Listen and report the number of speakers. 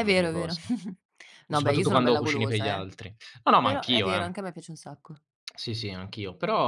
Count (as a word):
two